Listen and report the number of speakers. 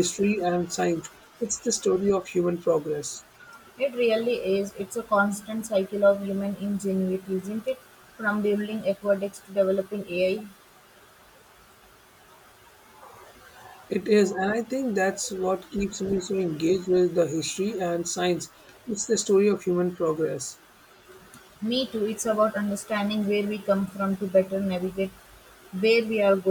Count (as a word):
two